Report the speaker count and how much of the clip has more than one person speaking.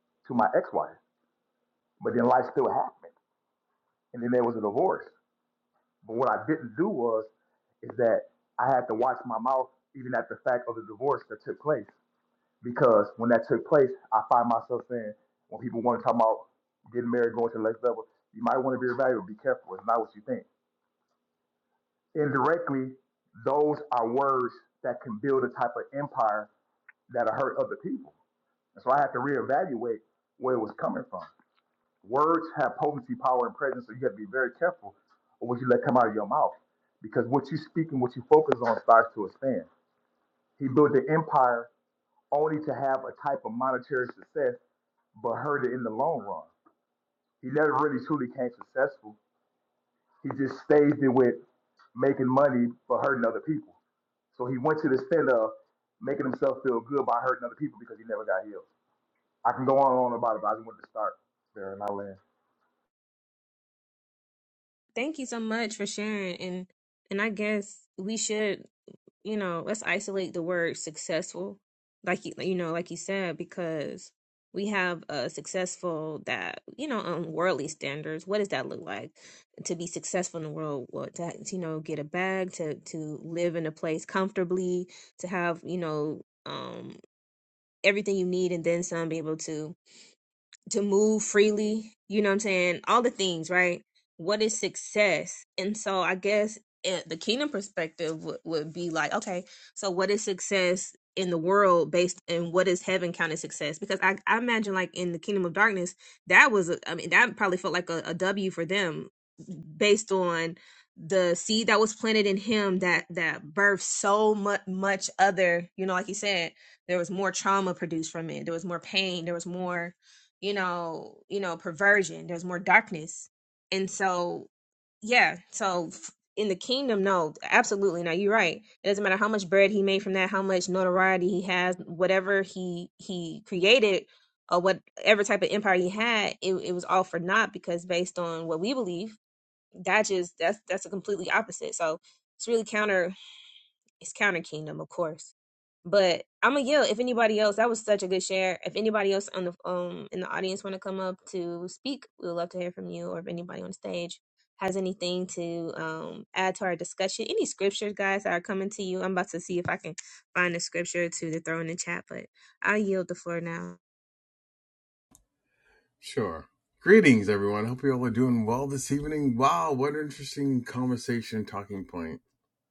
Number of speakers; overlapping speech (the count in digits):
3, no overlap